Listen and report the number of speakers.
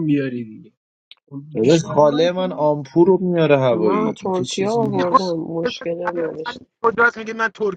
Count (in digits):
4